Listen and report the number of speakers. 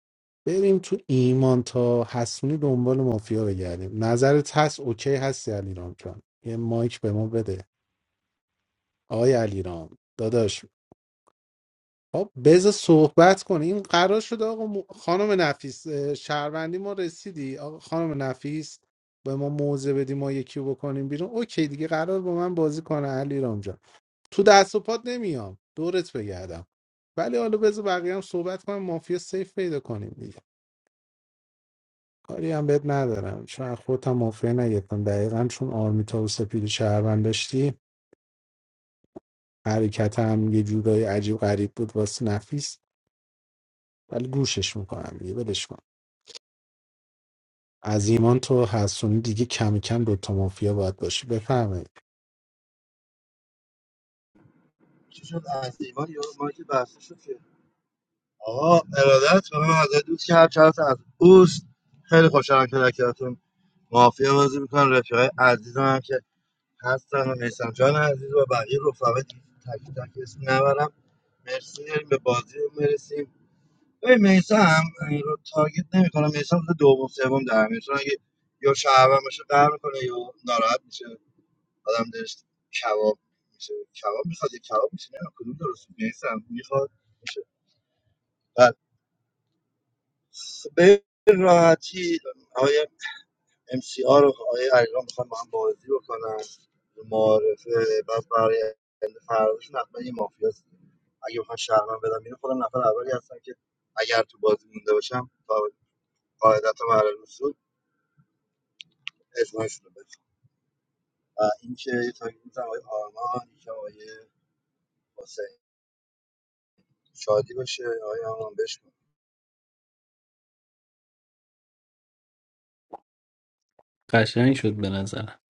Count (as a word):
three